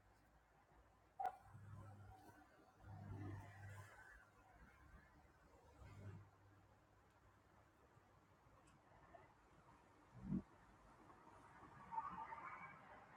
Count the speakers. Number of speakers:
zero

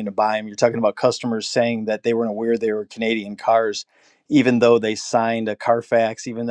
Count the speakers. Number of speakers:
one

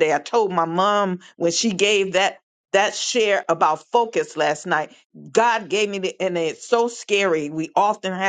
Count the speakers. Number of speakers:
one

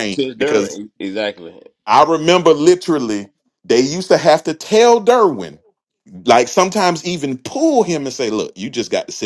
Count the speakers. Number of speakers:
two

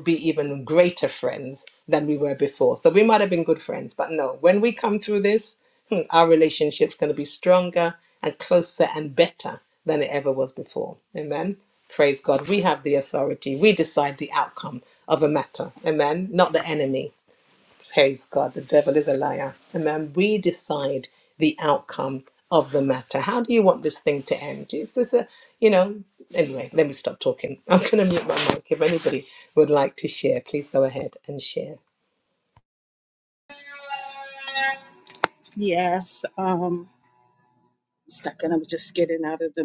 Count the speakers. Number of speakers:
two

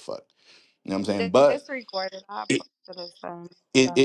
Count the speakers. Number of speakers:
two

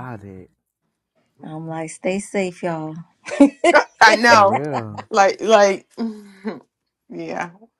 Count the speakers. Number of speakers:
three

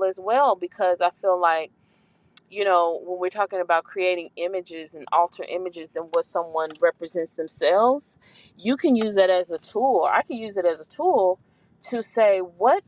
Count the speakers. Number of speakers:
one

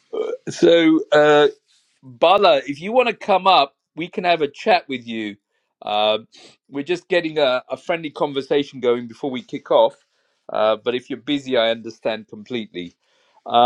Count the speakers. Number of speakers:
one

